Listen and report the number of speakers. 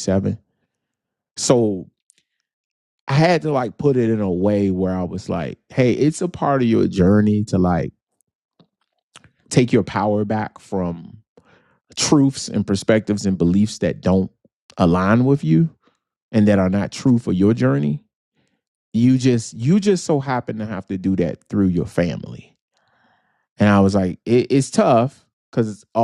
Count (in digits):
1